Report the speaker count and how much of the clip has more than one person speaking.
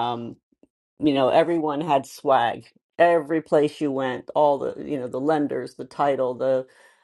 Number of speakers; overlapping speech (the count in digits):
1, no overlap